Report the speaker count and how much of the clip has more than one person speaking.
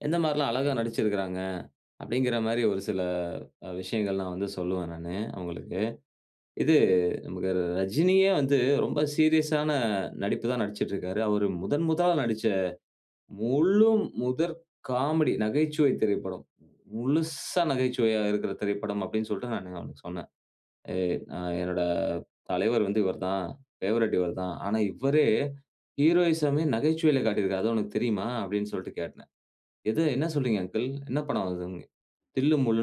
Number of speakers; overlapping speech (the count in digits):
1, no overlap